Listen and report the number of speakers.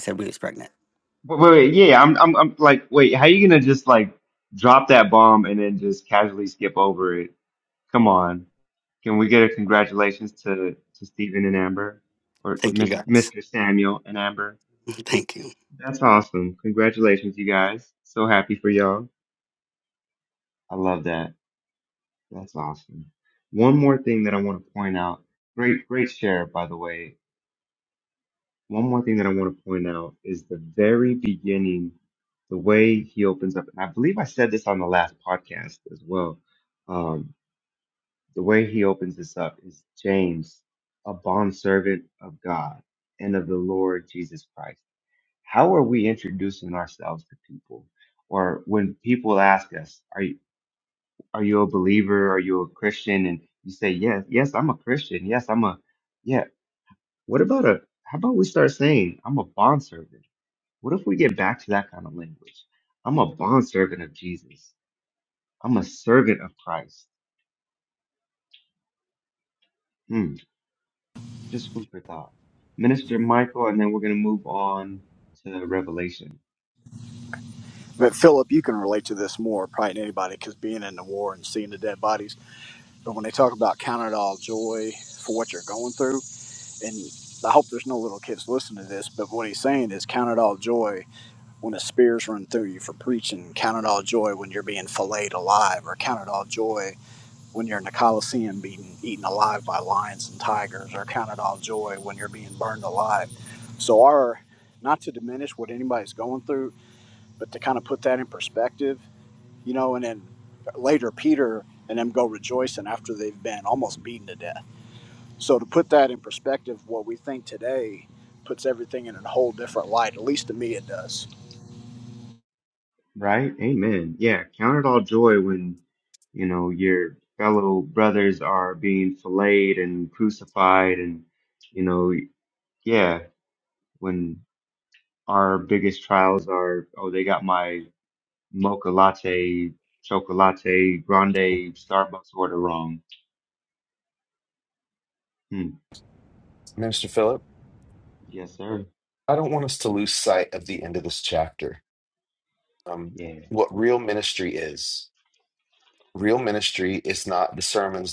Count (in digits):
4